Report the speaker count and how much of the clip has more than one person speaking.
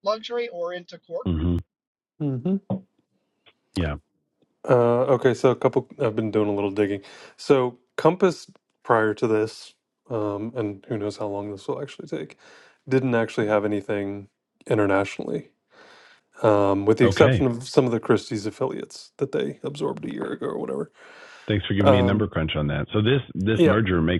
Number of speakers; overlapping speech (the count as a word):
three, about 5%